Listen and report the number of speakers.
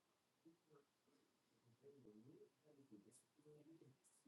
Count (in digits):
0